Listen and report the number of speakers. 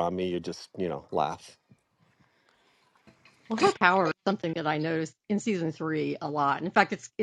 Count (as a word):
two